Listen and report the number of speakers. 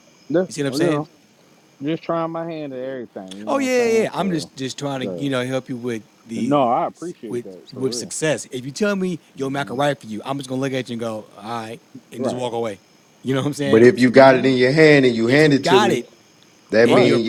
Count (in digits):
3